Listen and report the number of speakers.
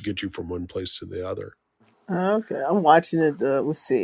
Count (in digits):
2